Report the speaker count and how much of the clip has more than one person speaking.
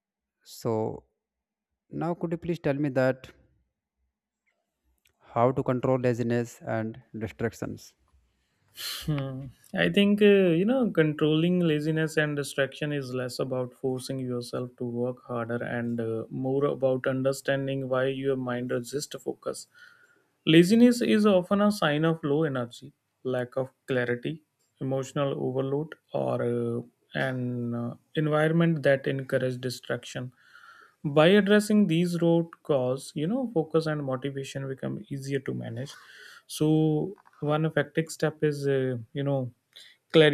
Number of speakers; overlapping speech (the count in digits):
2, no overlap